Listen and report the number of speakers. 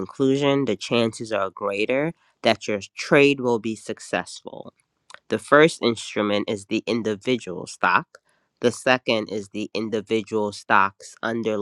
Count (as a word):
one